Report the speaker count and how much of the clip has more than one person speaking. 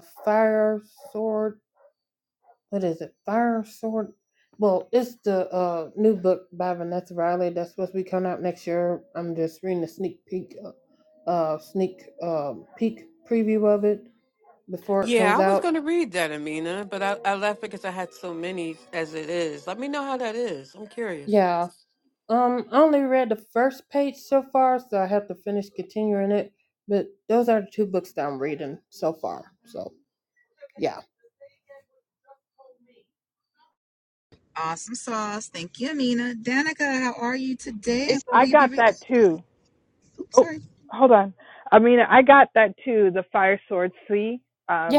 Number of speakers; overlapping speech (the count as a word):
four, about 3%